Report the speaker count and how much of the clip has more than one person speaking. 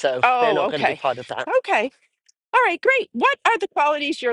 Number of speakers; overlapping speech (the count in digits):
2, about 19%